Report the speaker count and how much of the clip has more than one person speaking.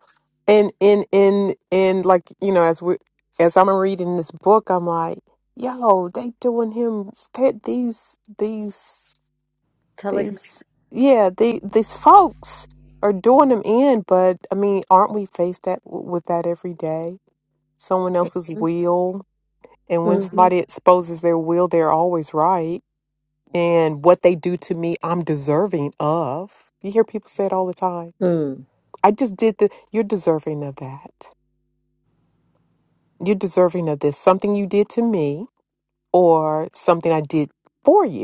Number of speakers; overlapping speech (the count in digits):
2, about 3%